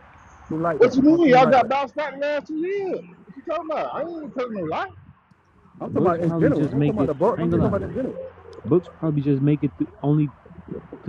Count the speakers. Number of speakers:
3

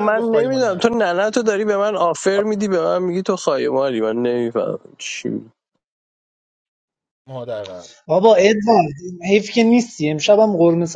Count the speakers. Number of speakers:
3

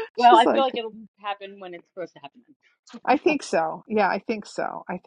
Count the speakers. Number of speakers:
2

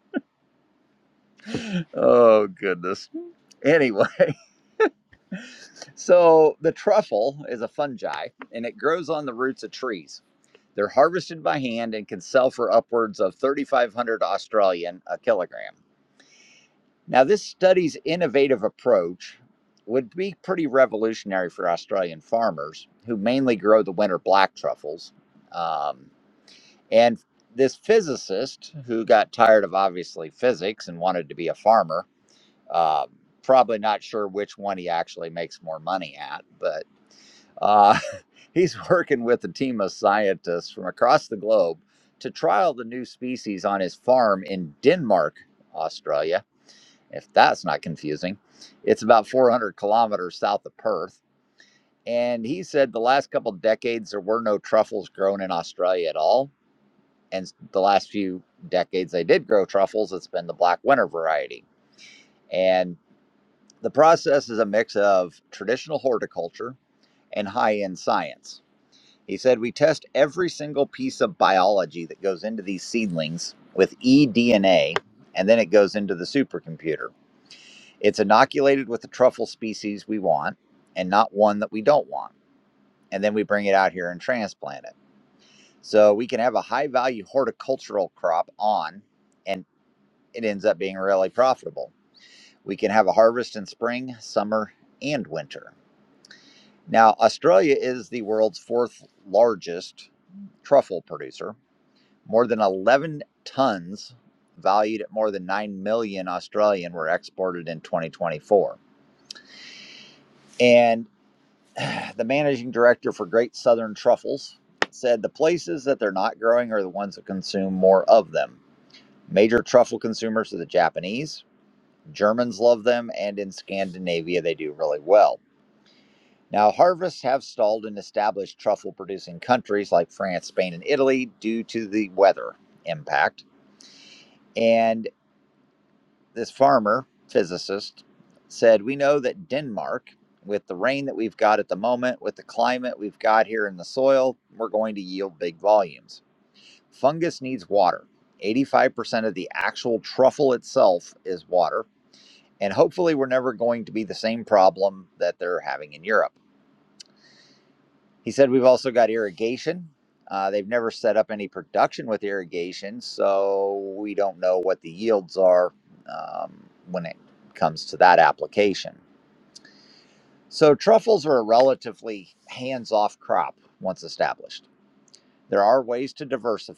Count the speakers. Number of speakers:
1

